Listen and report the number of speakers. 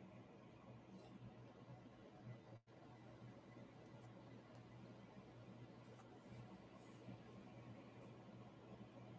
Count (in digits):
0